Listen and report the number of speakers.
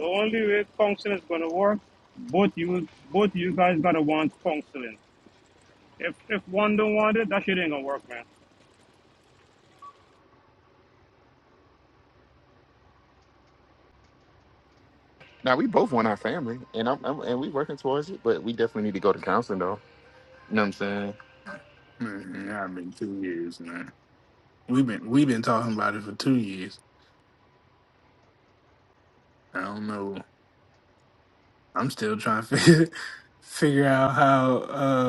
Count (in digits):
3